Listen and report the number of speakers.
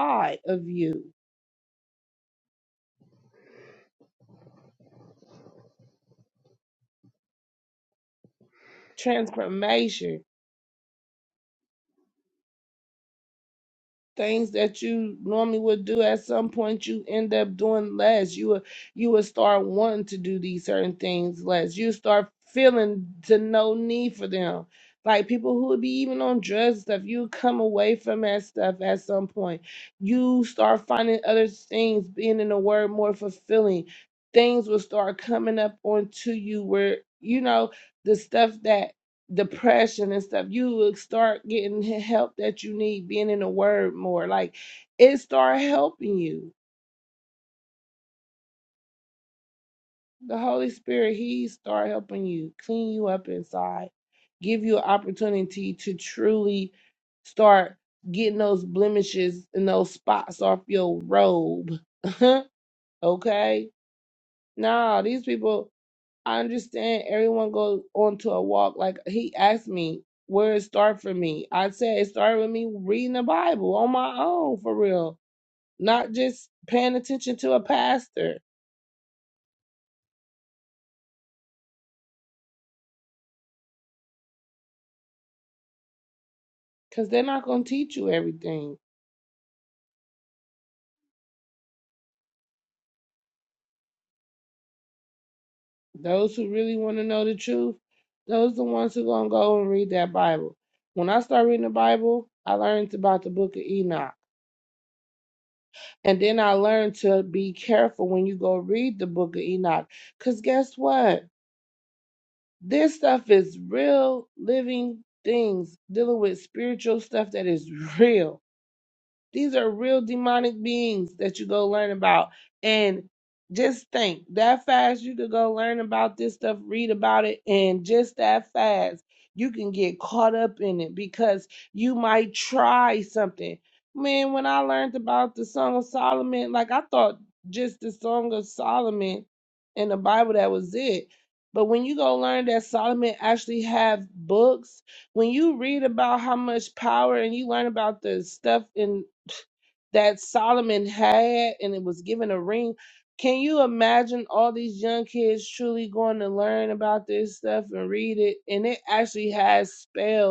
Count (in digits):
1